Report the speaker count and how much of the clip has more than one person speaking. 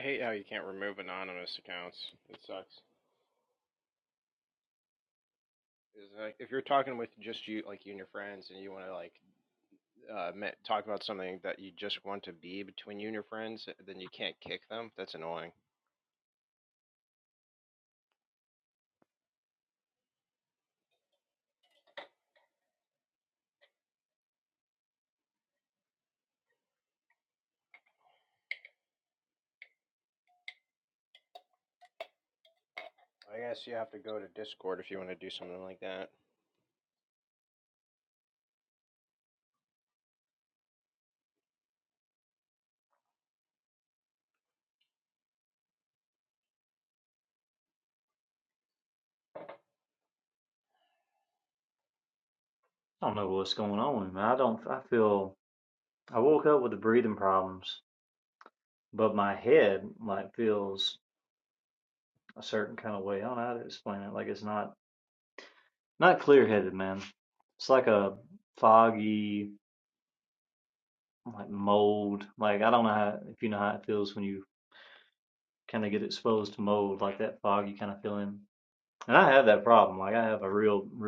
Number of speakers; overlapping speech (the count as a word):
two, no overlap